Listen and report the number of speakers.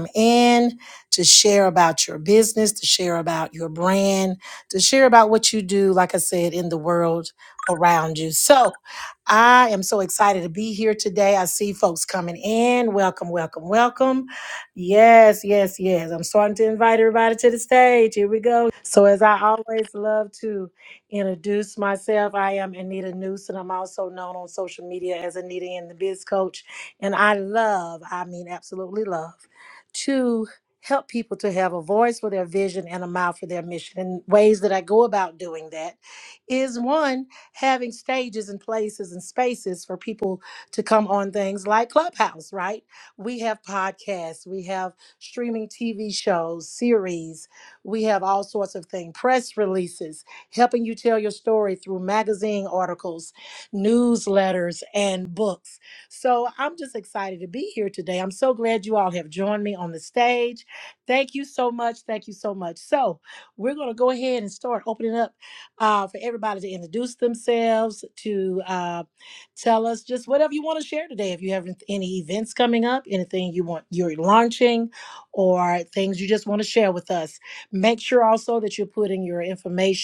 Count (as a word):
one